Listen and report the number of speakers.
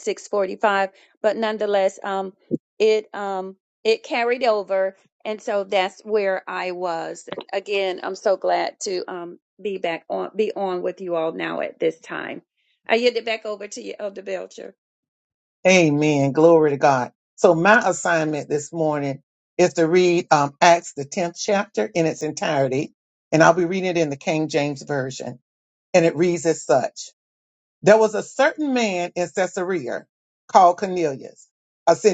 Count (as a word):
two